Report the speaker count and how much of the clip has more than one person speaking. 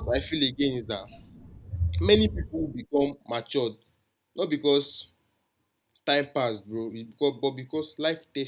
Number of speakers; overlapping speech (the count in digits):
1, no overlap